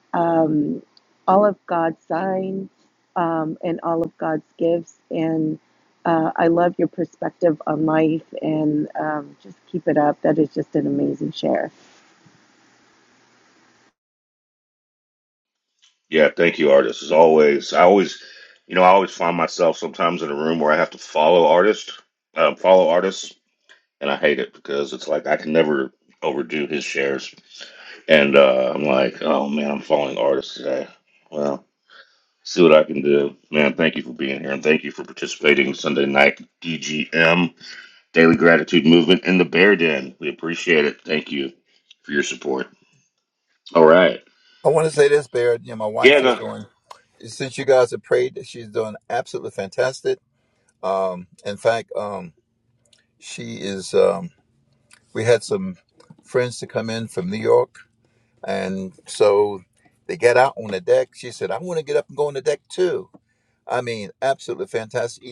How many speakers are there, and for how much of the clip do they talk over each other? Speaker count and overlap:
3, about 1%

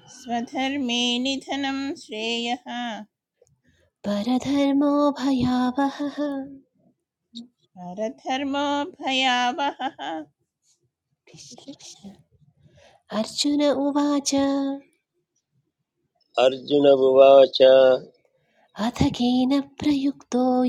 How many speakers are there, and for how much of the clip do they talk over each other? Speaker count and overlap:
3, no overlap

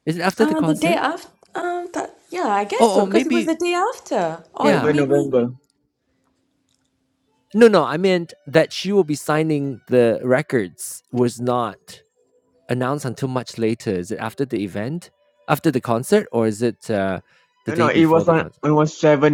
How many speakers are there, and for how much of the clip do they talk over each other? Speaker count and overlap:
3, about 15%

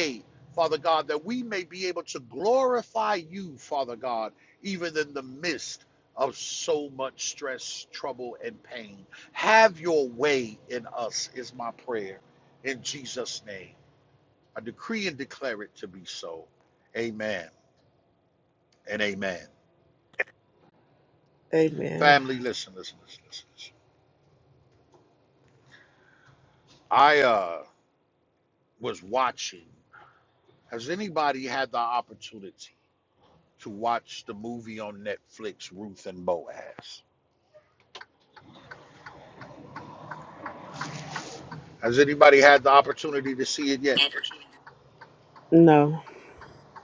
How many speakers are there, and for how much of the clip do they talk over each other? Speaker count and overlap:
2, about 1%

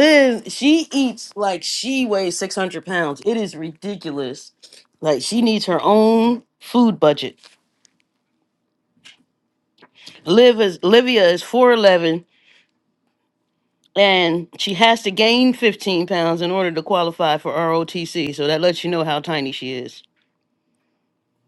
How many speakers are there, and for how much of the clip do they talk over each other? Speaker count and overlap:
1, no overlap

